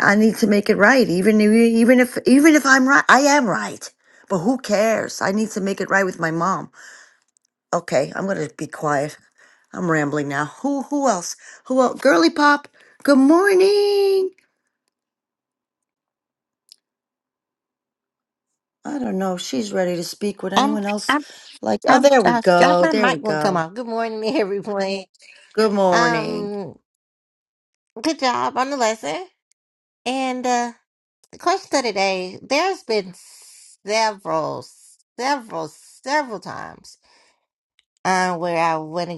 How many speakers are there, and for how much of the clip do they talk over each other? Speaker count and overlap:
2, about 7%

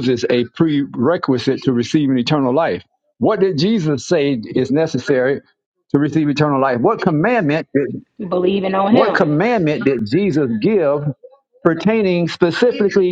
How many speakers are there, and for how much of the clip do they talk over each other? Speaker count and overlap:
2, about 3%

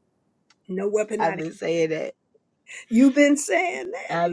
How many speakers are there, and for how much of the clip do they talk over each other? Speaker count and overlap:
2, about 8%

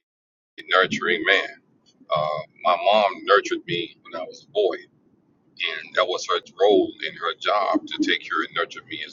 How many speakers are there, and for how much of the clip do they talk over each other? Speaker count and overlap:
1, no overlap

